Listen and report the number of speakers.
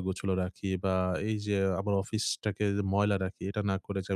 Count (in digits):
1